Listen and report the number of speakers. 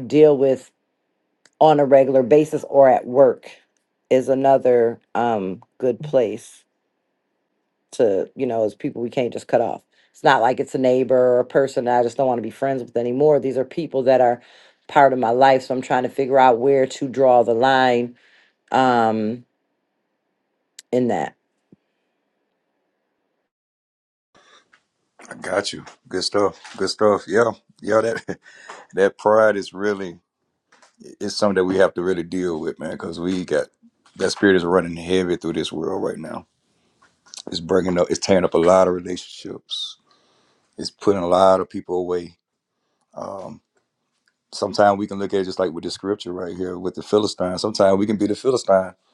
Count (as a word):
two